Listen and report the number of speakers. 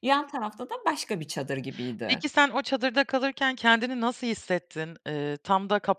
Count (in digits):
2